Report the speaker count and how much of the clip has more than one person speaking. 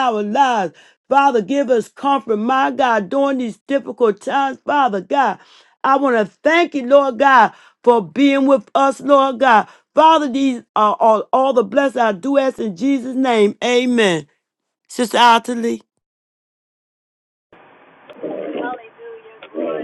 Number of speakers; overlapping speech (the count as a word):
two, no overlap